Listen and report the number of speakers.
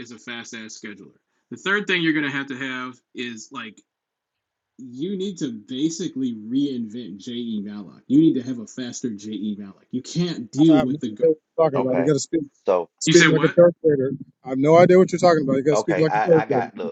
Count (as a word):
three